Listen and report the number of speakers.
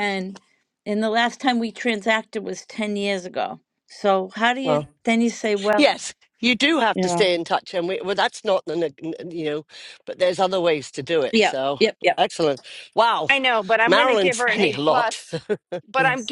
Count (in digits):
3